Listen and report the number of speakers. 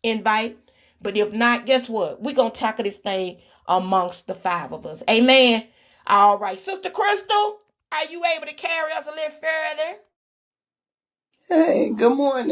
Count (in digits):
2